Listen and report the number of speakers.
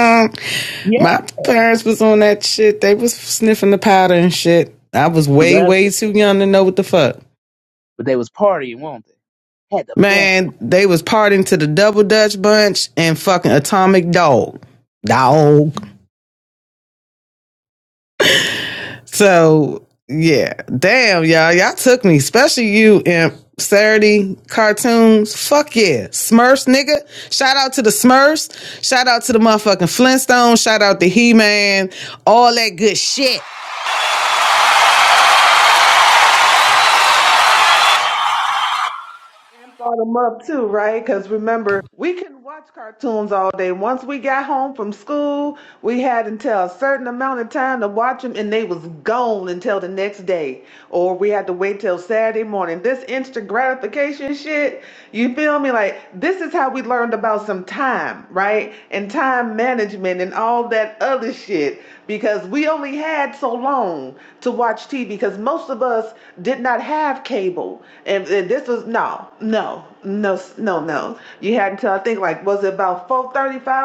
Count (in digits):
3